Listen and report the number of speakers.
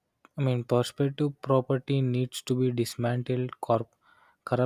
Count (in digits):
1